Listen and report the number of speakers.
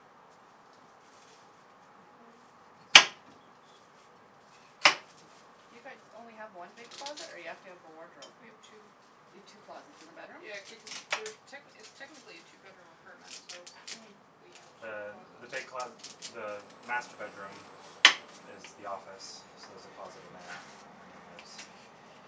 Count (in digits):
3